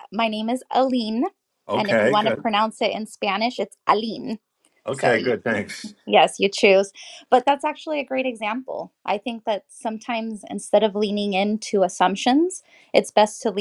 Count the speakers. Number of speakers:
two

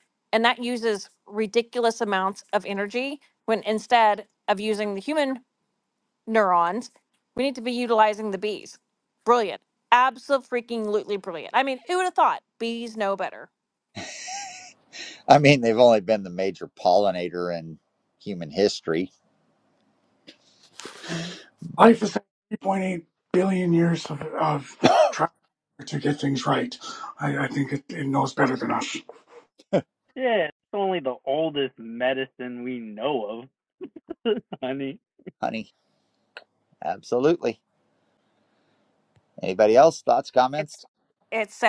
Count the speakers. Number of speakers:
four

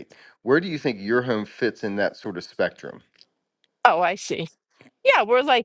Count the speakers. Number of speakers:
two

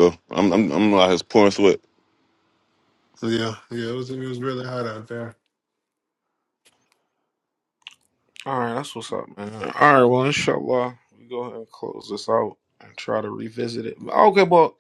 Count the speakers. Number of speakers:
three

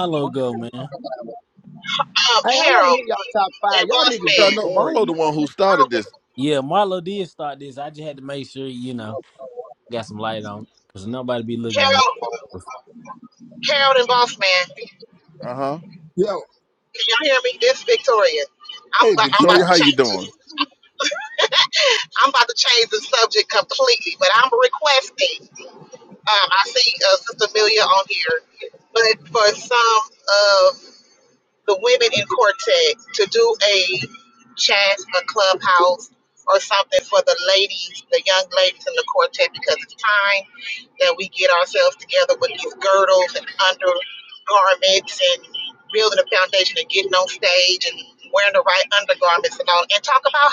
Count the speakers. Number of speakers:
four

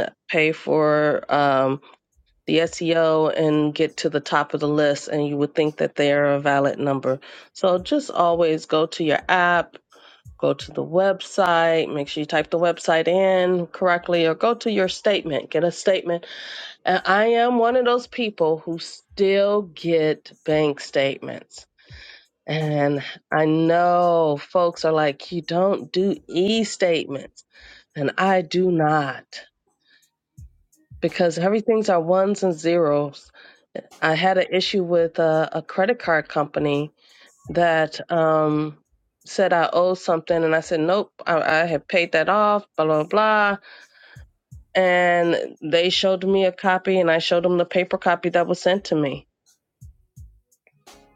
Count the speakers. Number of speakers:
one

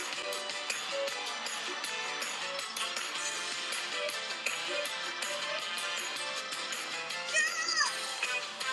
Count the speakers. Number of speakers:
zero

